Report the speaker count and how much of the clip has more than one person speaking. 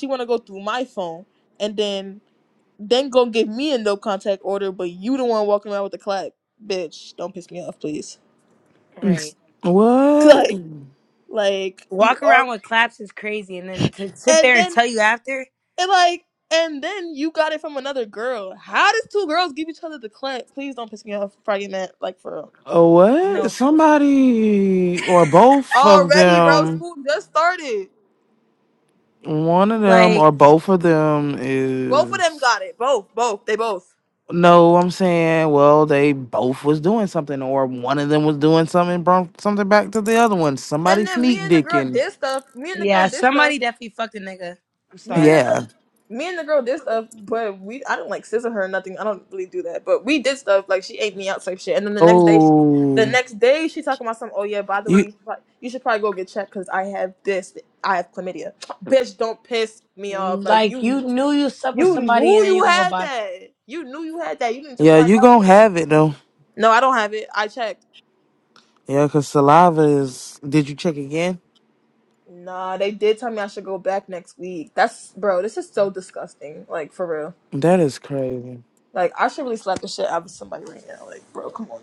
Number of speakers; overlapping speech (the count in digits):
3, about 12%